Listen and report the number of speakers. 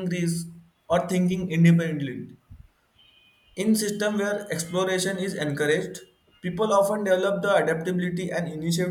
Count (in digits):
1